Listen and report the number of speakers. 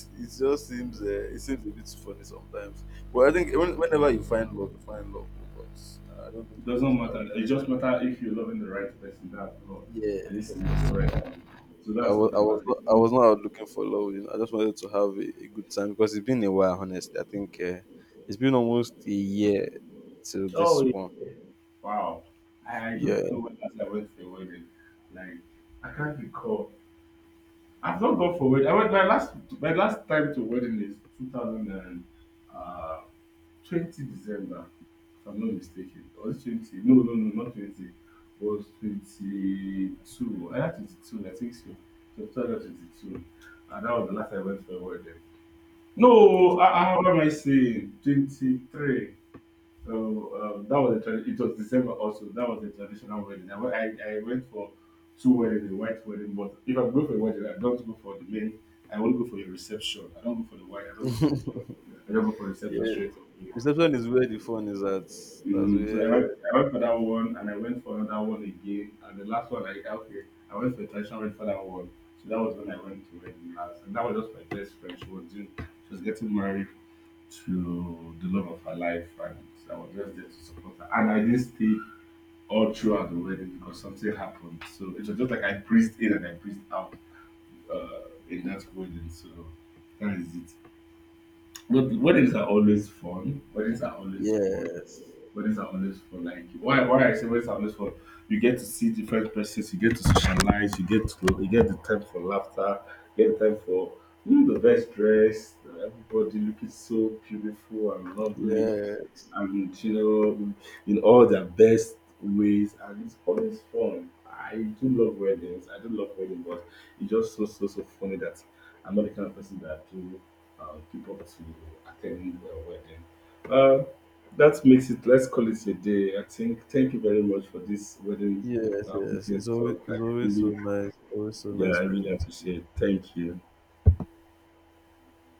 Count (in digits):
2